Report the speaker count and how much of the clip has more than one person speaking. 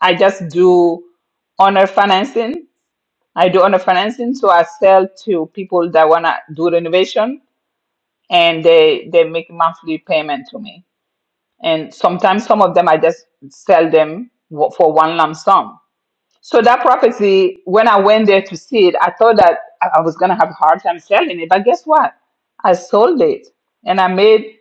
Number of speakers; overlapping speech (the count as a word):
one, no overlap